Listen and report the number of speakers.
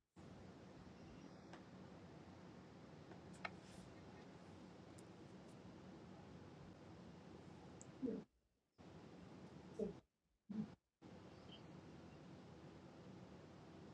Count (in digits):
0